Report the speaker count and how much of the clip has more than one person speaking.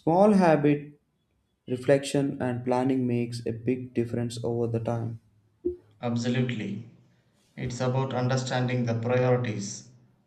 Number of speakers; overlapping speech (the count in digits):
2, no overlap